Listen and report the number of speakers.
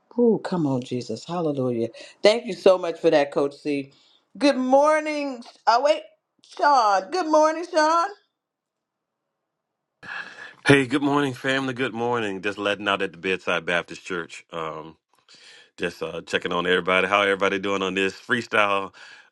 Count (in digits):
2